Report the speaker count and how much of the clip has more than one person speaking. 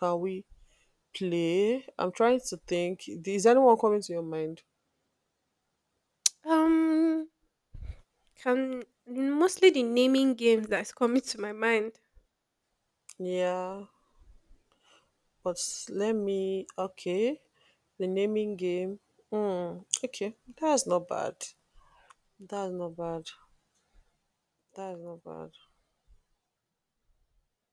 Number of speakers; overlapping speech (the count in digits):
2, no overlap